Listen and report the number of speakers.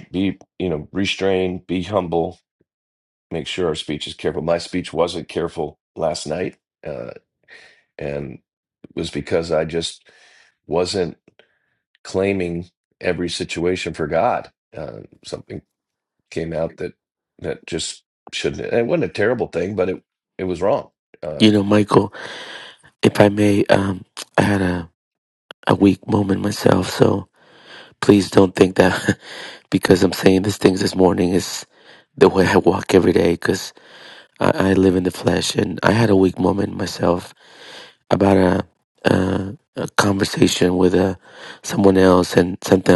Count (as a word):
two